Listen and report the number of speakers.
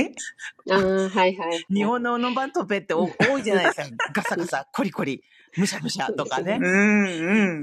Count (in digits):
3